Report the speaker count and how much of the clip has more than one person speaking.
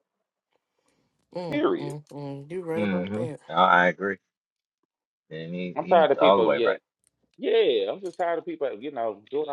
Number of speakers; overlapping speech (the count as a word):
three, about 22%